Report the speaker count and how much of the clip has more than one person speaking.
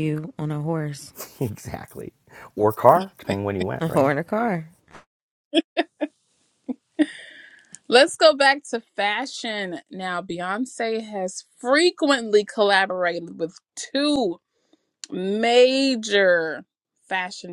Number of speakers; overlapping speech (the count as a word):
three, about 2%